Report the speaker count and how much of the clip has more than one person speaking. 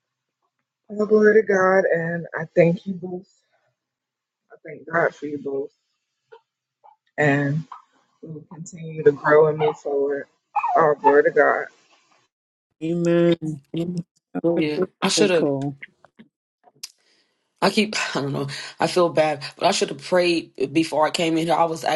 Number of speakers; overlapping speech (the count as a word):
three, about 1%